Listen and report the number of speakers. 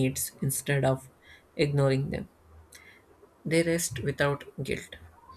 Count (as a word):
one